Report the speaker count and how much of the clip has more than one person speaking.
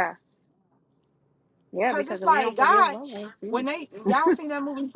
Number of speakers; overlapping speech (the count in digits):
2, about 25%